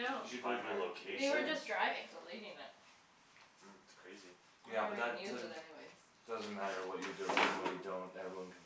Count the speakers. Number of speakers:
4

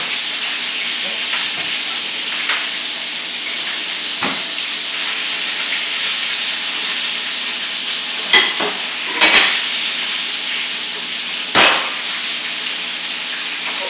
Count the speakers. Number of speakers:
0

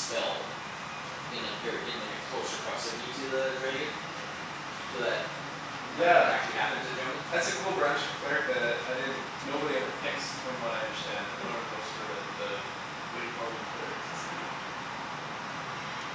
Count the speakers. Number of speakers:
2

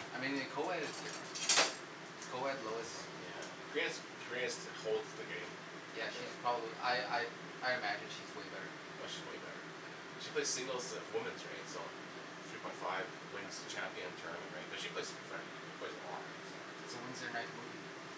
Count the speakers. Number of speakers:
2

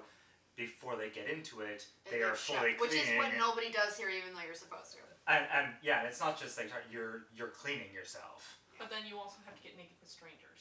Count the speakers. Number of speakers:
3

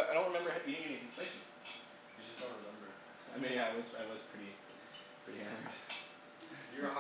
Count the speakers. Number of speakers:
2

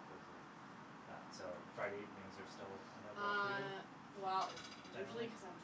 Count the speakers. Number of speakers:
2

